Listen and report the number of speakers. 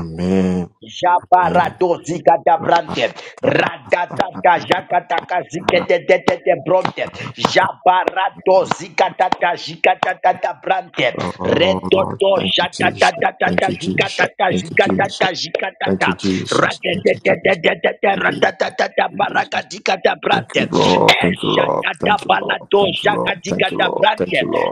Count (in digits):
2